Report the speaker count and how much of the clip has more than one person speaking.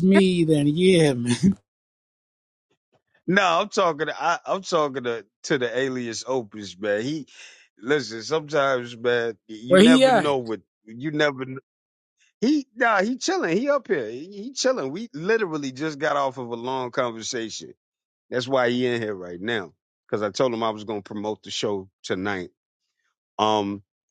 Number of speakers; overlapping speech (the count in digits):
2, about 3%